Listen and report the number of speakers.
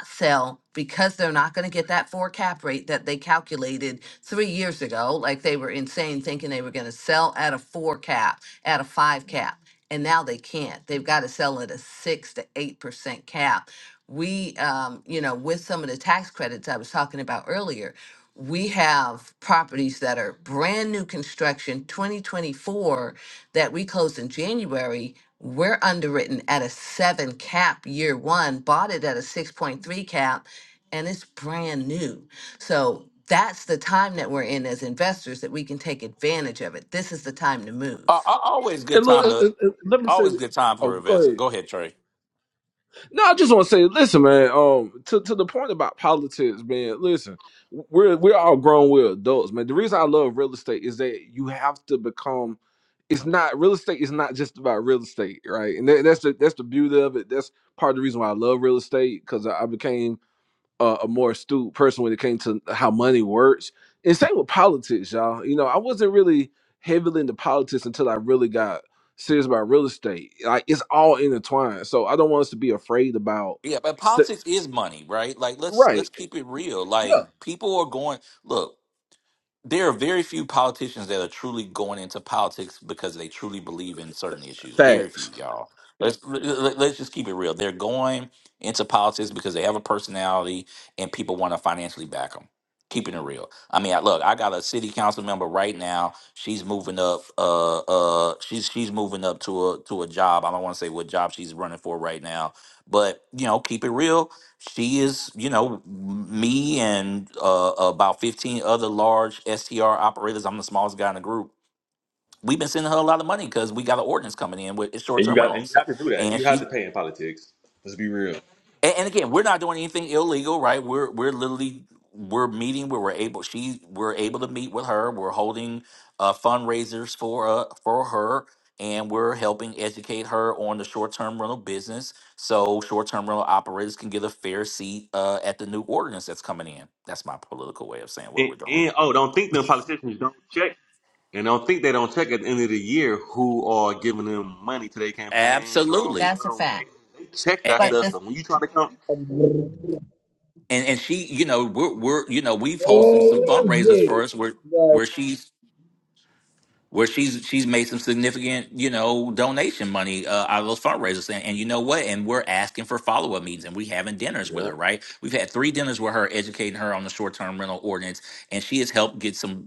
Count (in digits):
5